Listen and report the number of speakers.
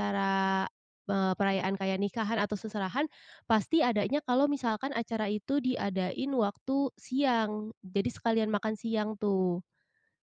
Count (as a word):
one